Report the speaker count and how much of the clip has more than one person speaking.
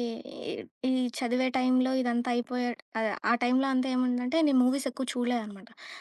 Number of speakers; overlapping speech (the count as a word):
one, no overlap